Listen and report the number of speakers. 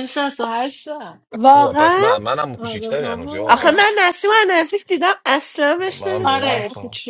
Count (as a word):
three